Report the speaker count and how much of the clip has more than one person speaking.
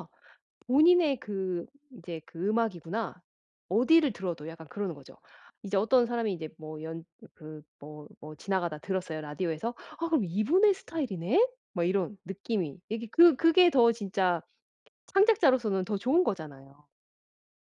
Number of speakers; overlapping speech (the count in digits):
1, no overlap